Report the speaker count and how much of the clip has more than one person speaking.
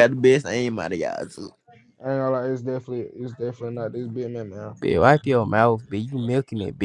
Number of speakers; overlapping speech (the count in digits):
3, no overlap